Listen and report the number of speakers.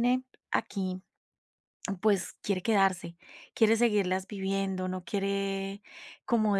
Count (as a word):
one